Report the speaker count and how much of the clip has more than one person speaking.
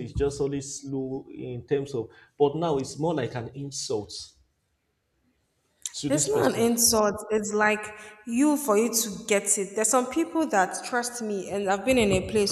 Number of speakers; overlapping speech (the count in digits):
2, about 5%